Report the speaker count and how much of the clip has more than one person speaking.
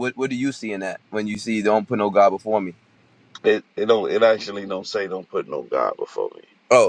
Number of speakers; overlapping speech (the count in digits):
2, no overlap